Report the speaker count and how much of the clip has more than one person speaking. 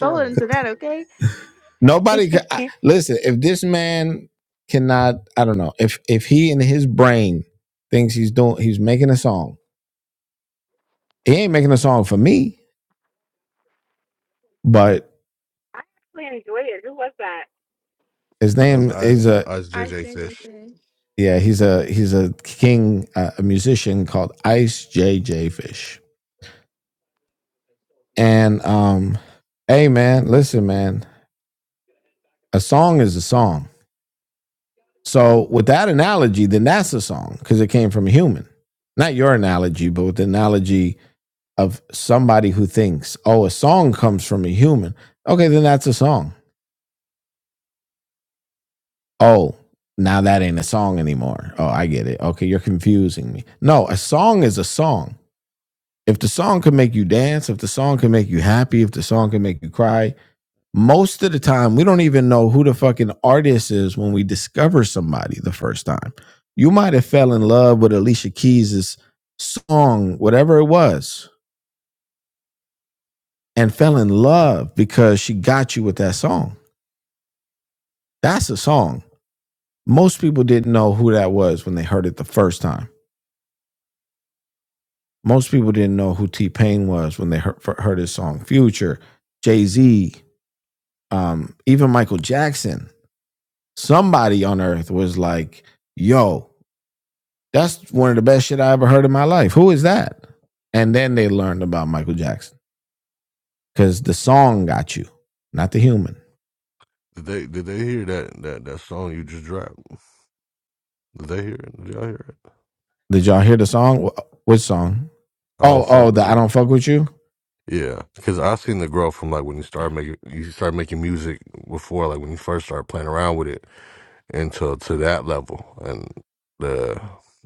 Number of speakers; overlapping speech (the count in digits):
4, about 2%